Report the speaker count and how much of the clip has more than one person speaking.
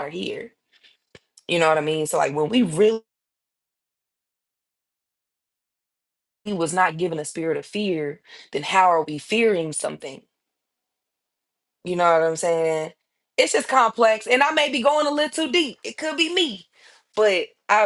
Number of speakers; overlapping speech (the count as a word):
one, no overlap